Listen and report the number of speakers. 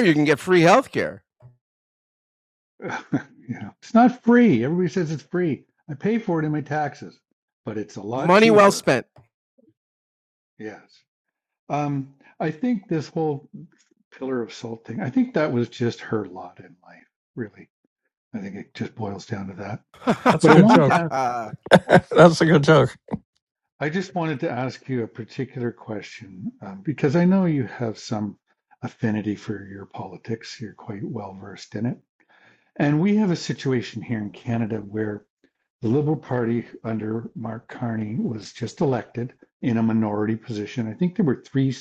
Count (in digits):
3